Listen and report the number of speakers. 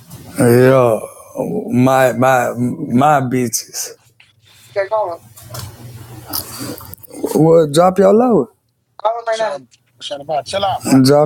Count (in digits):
3